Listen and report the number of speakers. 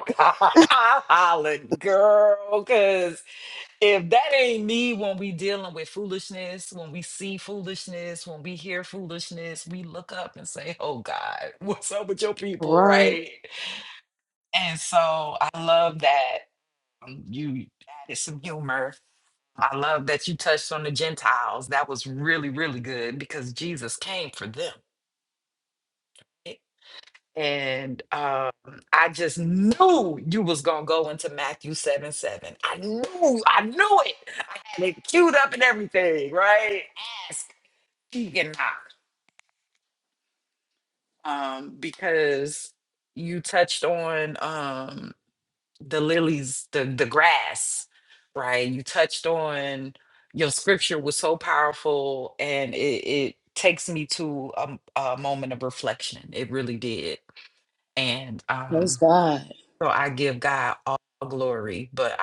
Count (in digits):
2